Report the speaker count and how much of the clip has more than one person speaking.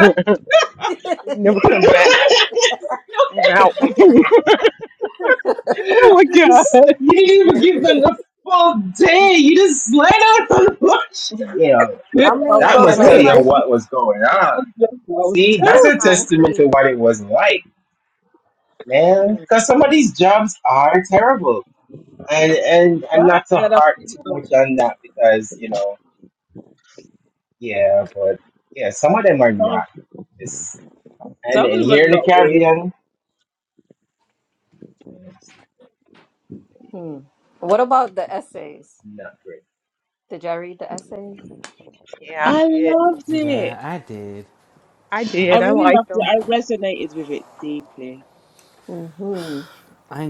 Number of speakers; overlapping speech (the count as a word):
five, about 16%